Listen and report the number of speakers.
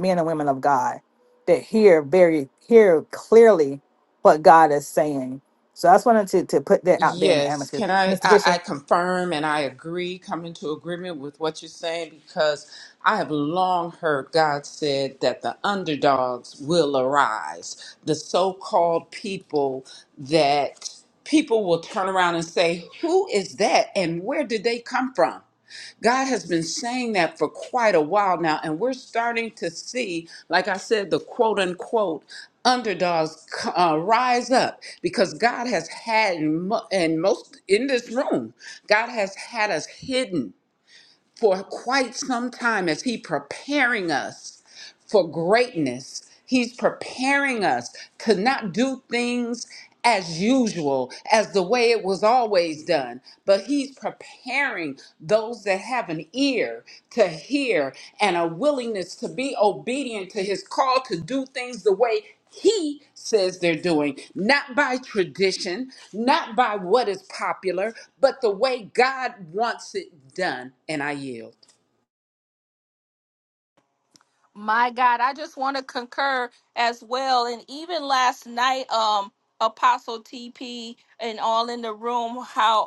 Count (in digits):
3